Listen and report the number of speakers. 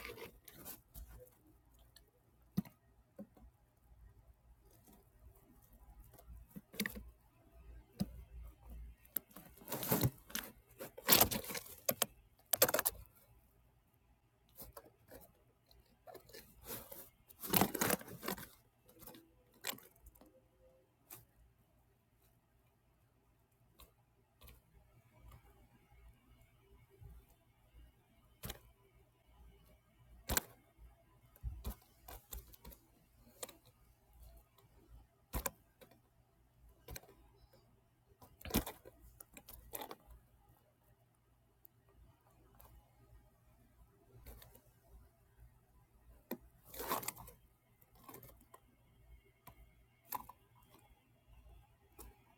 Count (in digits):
0